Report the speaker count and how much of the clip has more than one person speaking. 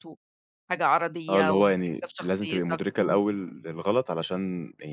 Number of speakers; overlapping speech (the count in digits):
2, about 39%